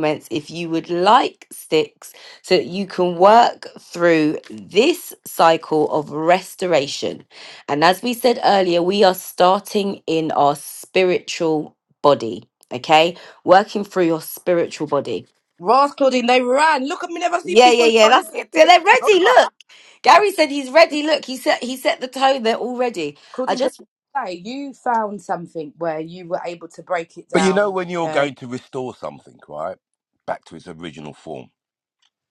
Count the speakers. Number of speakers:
3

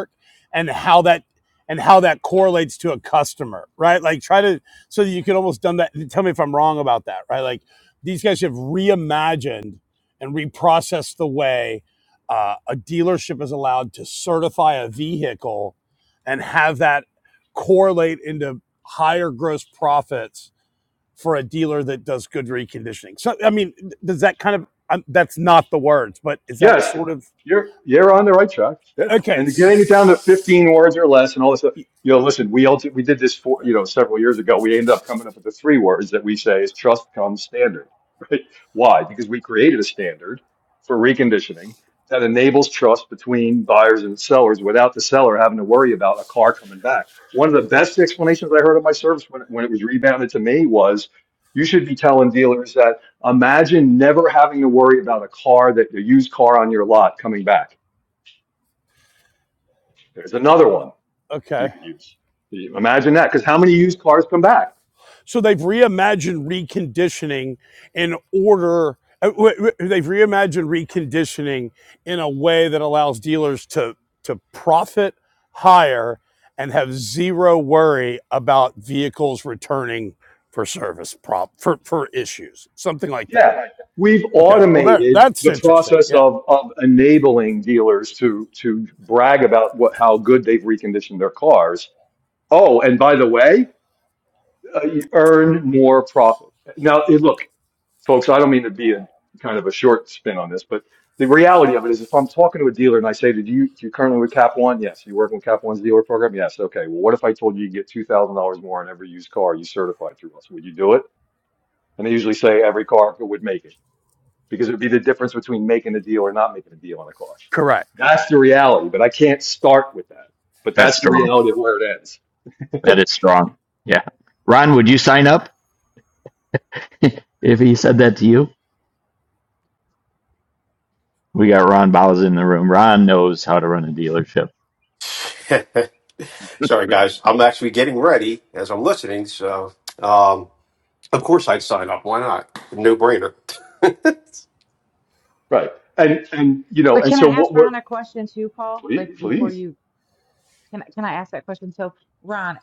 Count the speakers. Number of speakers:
5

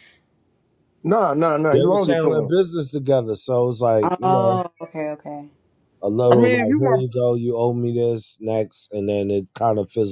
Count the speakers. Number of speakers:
3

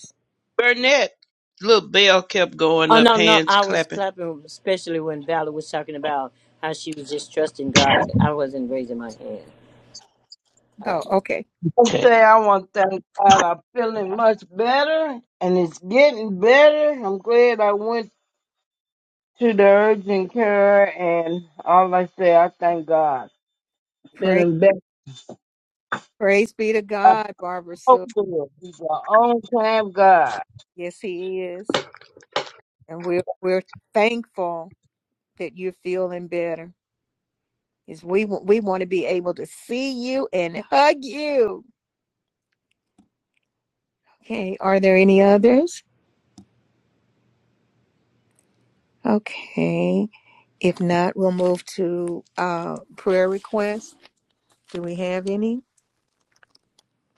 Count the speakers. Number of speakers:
4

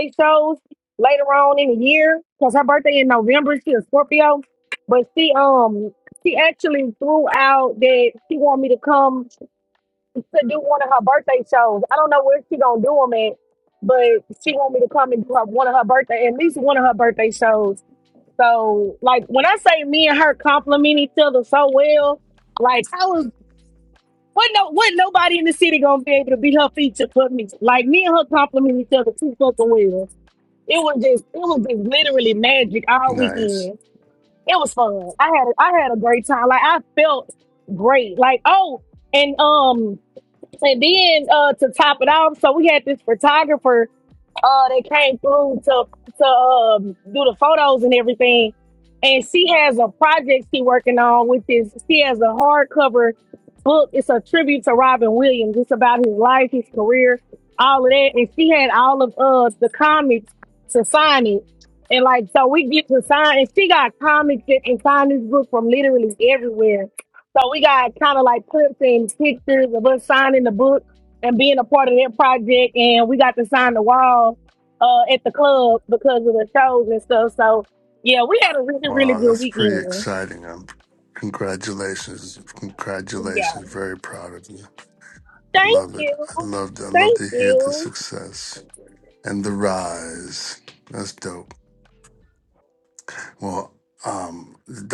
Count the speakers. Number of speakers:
2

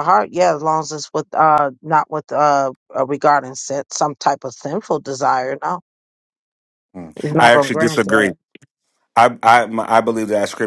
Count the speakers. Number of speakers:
2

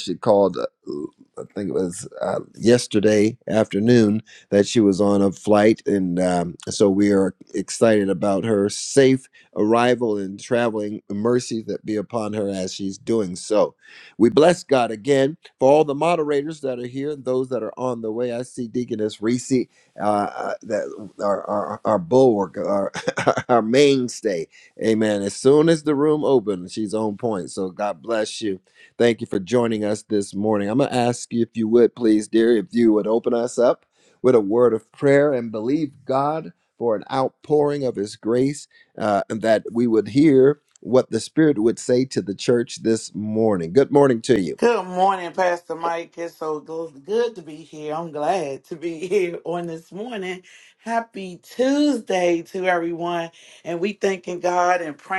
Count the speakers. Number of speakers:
2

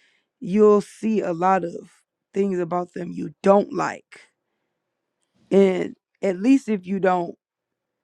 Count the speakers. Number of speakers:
1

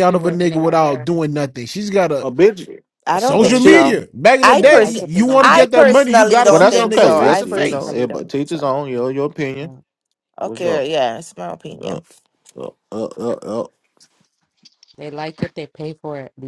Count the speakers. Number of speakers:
4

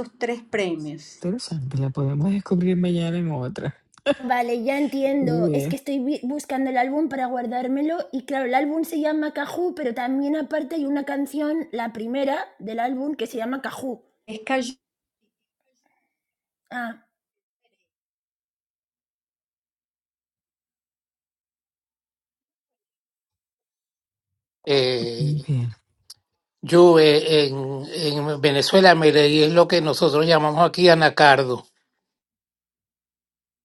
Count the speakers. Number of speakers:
4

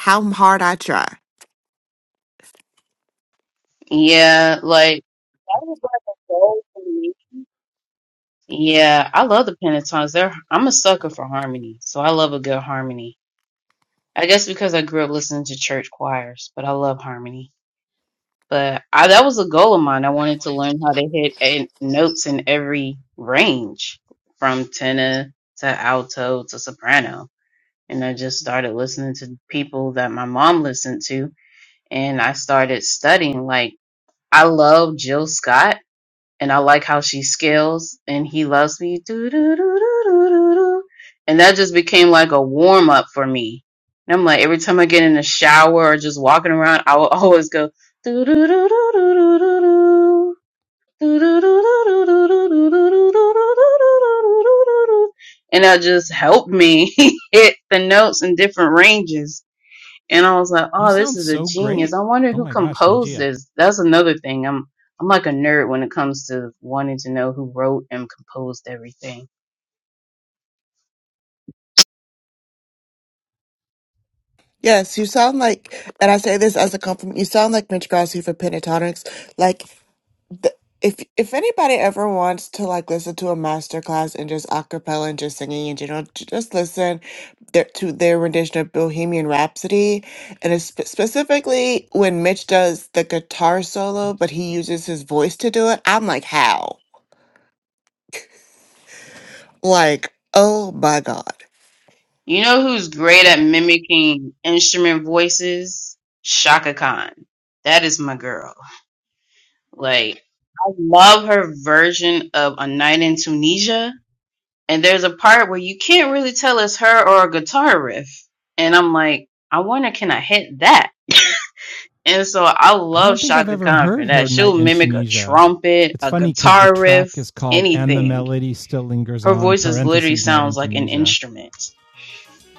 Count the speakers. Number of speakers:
3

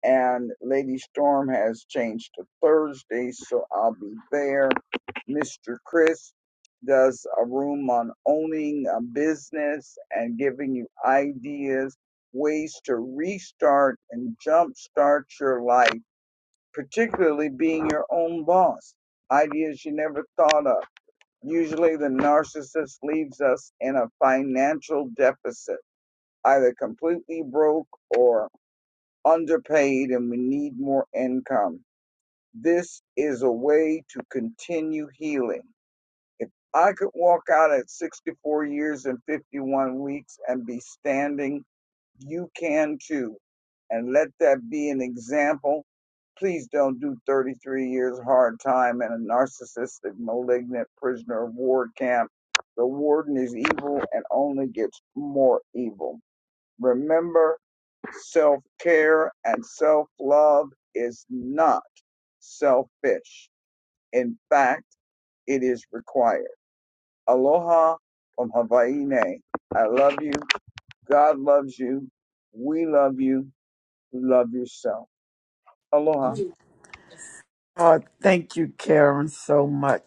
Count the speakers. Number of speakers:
2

